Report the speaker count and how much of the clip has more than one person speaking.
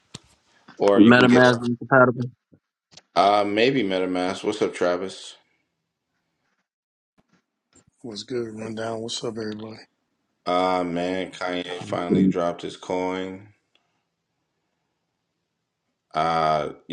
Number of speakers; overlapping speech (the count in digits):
3, about 5%